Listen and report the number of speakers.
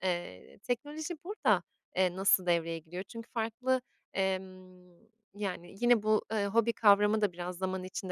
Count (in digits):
1